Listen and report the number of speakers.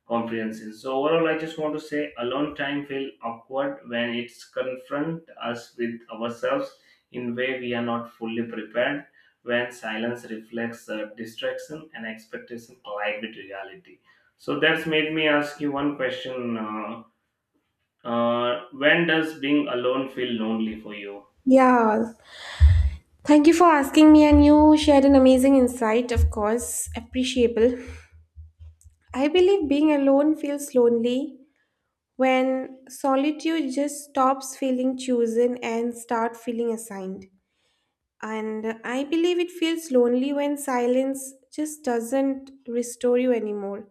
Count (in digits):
2